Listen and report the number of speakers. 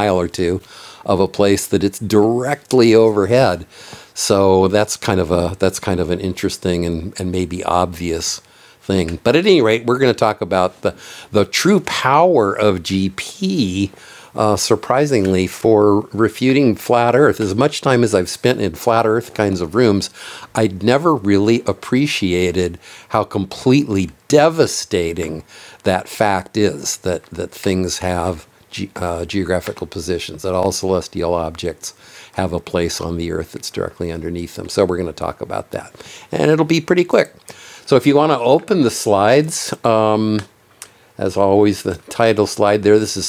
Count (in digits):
1